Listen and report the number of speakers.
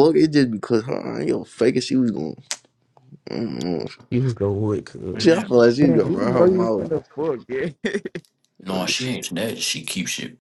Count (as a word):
four